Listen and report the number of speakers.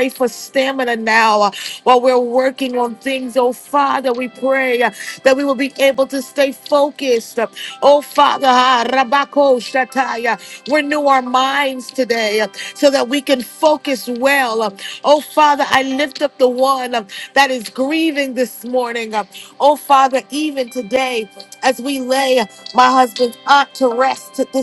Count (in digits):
1